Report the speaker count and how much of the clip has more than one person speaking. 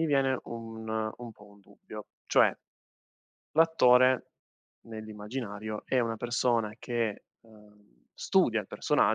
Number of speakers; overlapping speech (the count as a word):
one, no overlap